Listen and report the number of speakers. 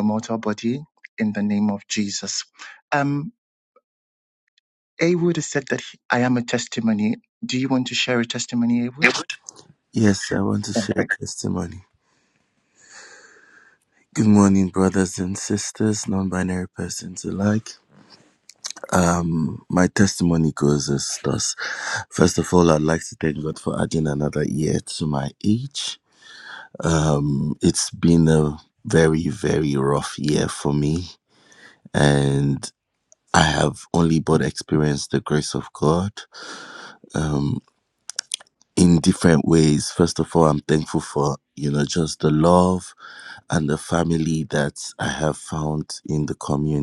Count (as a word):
two